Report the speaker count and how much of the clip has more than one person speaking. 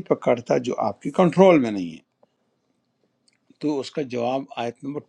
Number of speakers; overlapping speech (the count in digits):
1, no overlap